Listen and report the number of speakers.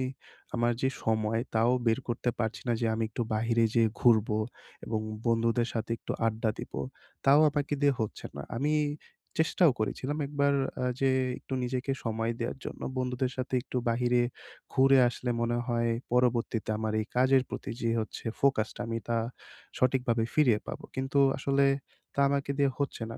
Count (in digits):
1